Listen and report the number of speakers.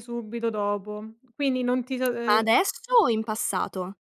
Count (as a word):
two